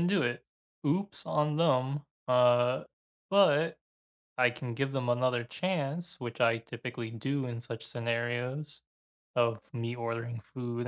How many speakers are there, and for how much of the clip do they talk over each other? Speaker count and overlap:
one, no overlap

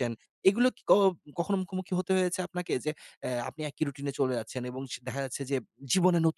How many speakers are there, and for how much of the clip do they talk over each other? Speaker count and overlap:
one, no overlap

